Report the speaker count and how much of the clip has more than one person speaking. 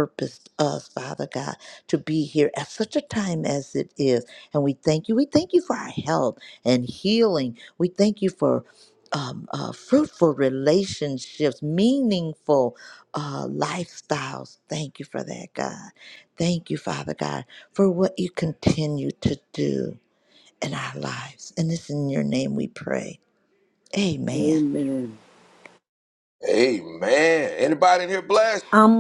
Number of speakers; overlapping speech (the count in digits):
3, about 1%